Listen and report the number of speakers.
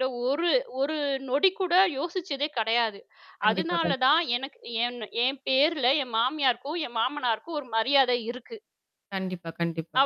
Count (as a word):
two